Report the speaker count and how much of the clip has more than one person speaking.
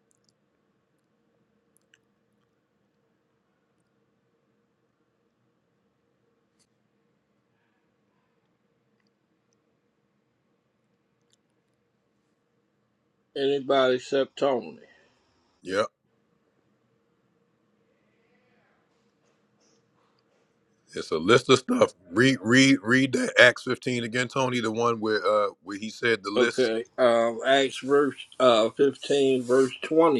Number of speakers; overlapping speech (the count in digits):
2, about 1%